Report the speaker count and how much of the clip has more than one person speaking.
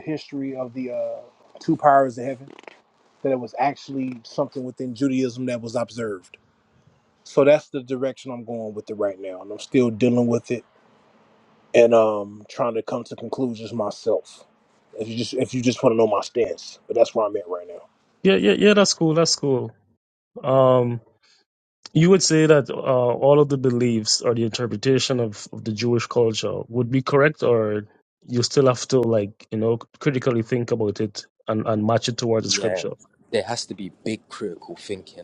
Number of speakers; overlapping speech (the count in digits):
3, about 1%